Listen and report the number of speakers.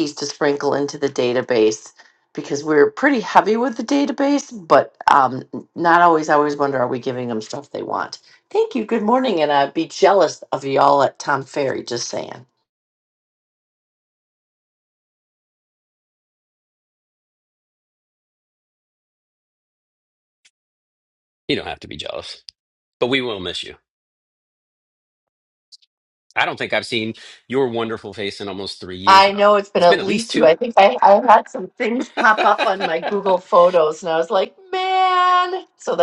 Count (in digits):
2